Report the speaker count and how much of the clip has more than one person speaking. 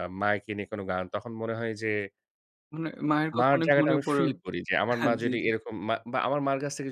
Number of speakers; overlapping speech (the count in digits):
2, about 22%